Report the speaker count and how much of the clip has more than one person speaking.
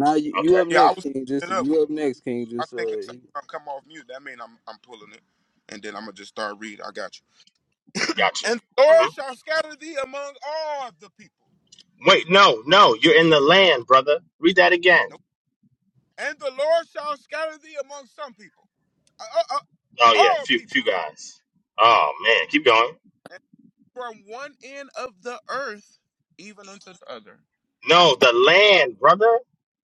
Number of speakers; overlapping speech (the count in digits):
3, about 8%